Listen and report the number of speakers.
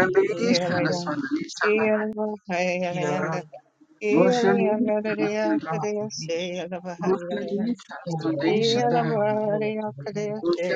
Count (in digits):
3